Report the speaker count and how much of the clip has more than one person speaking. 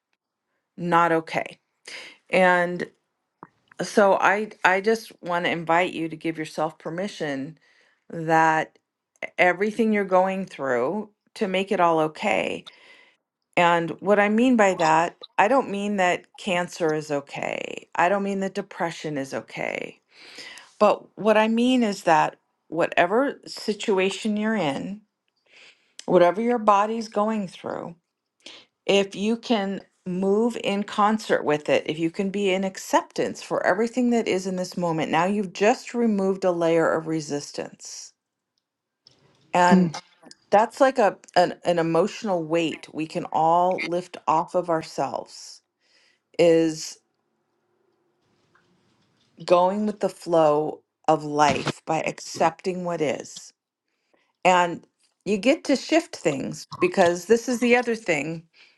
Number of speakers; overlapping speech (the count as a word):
one, no overlap